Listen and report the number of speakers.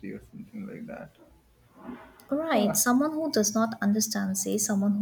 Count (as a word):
two